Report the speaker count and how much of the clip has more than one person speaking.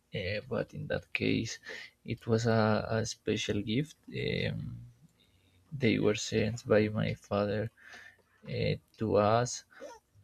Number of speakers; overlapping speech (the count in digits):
1, no overlap